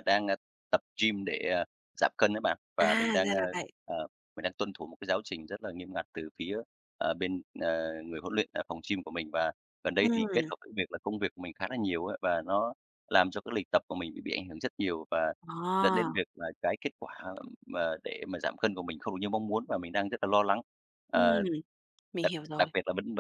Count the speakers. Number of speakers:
2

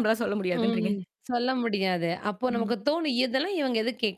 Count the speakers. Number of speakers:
2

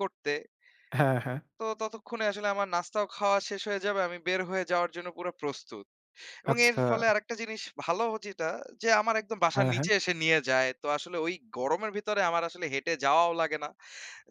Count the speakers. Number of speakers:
2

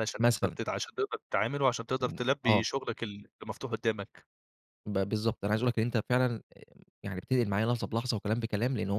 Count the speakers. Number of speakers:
2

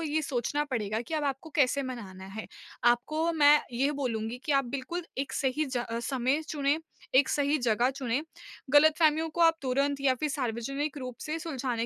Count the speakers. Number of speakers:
1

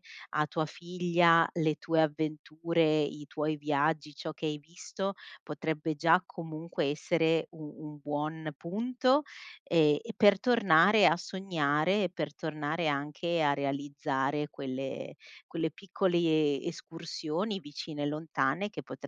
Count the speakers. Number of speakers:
1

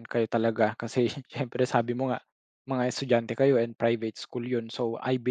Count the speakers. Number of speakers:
1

